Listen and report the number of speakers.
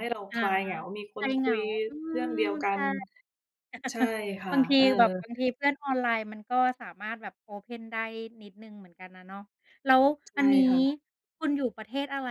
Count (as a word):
two